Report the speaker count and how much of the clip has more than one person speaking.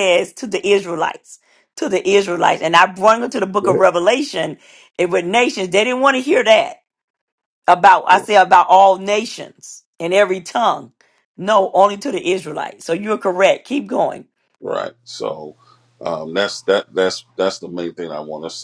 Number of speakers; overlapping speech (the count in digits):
2, about 1%